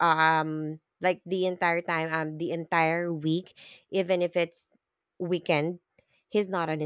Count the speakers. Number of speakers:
1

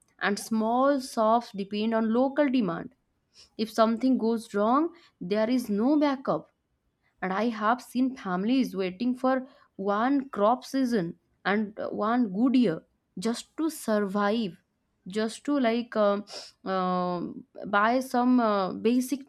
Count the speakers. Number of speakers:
1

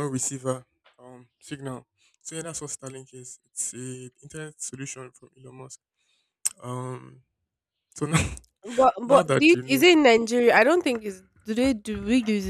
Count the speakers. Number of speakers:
2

